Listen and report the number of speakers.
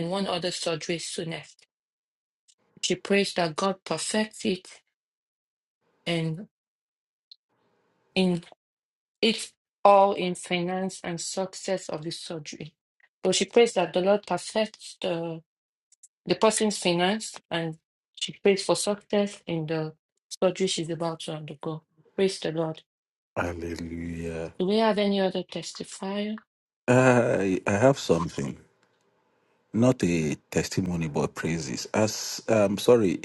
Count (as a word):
two